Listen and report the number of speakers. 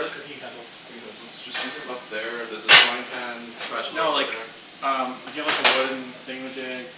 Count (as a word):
two